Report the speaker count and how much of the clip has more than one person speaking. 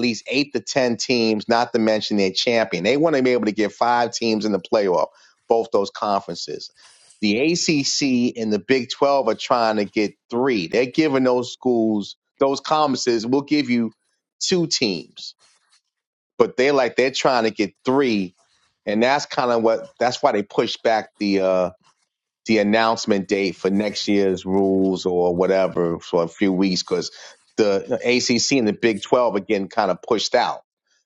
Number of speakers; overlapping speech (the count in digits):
1, no overlap